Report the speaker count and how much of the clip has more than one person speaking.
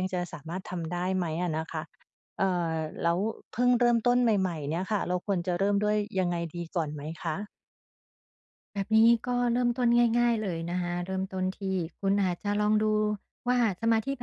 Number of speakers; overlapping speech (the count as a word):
two, no overlap